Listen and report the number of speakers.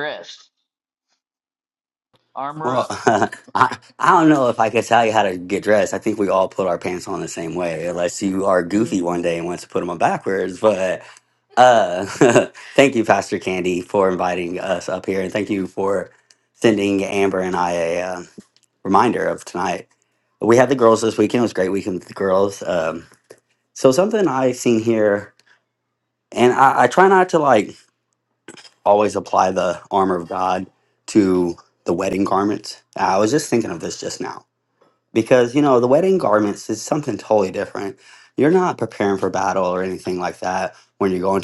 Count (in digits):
2